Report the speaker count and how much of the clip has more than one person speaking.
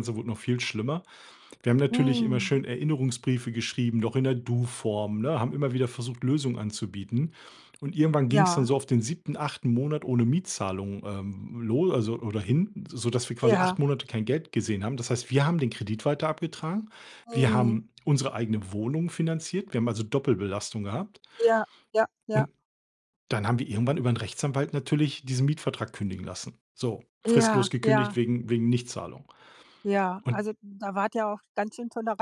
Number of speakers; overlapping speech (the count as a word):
two, about 9%